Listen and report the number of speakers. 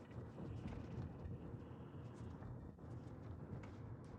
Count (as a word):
zero